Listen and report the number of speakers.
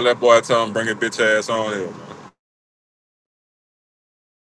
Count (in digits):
1